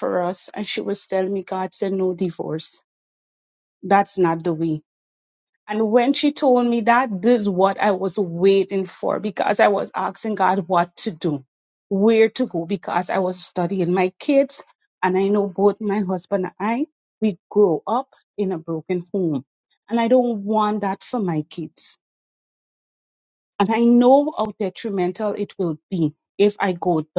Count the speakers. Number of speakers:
1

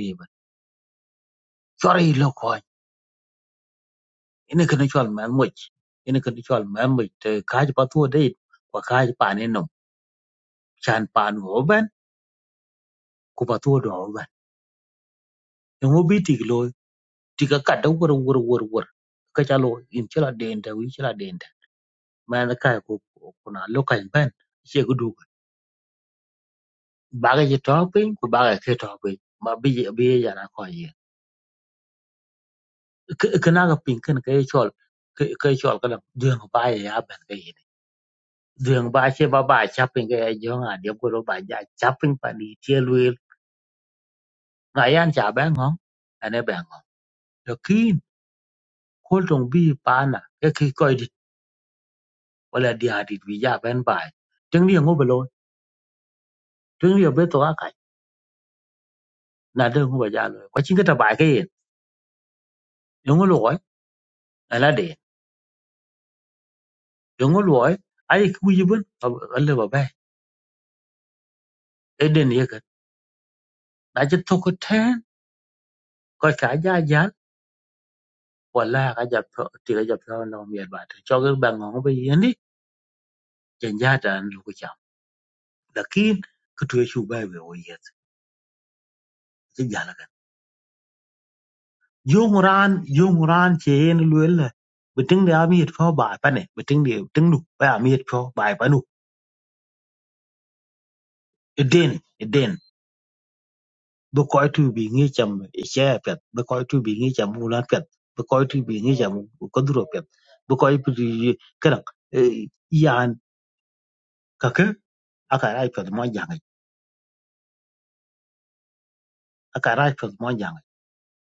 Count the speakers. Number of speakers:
1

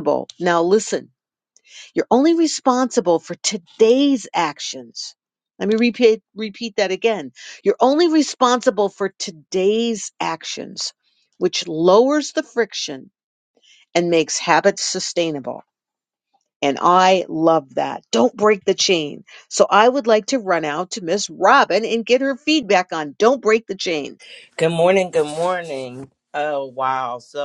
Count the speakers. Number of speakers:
2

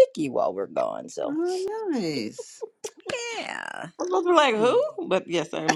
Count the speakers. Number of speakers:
3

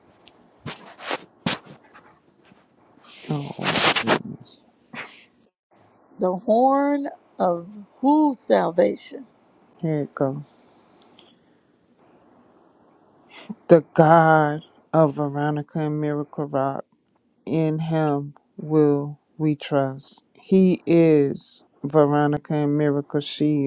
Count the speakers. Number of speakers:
2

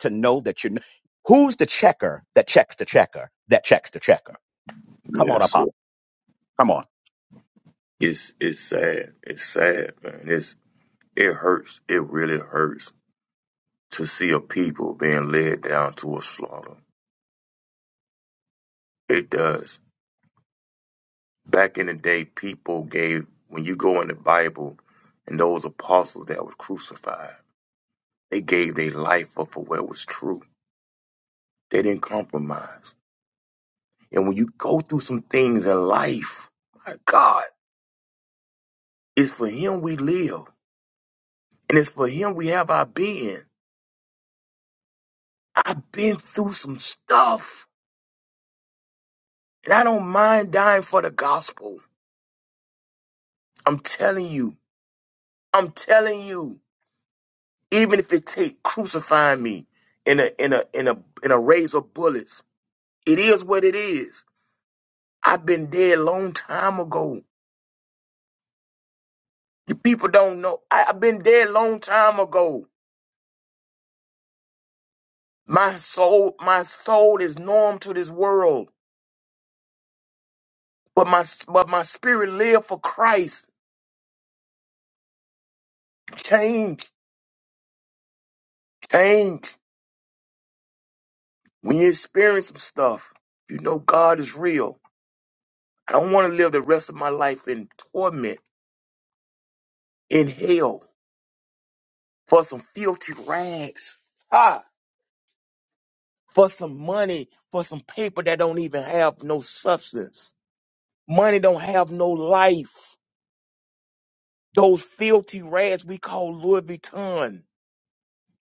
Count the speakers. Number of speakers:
2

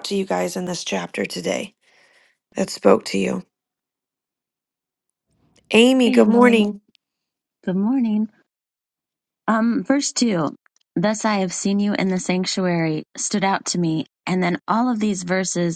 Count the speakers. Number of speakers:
2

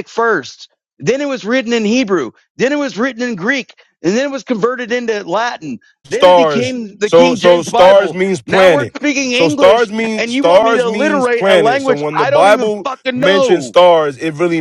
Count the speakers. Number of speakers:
2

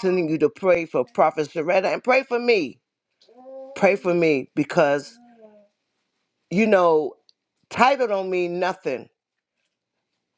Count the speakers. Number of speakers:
1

